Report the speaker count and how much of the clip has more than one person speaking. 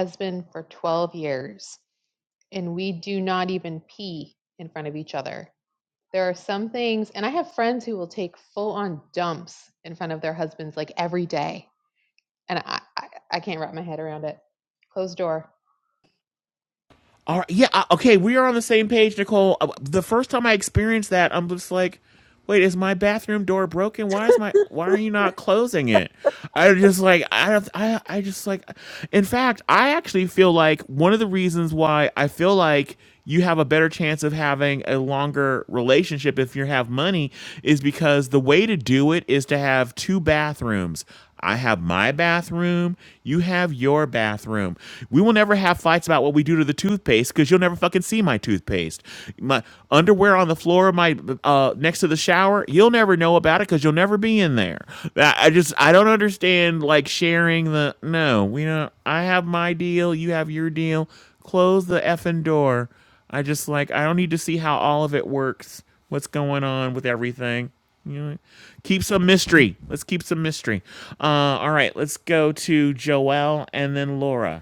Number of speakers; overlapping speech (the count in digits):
2, no overlap